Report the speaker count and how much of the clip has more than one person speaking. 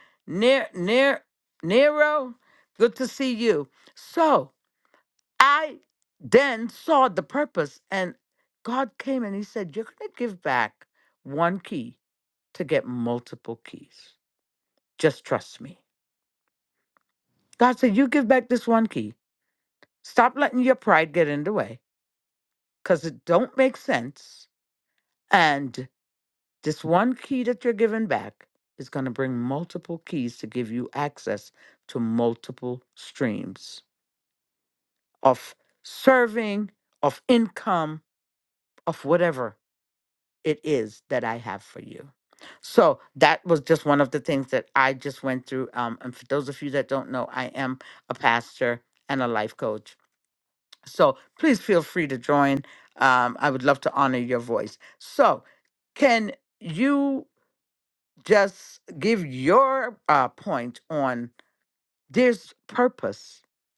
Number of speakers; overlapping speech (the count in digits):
1, no overlap